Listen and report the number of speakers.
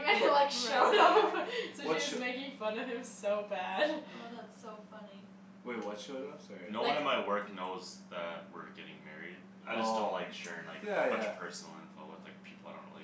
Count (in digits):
4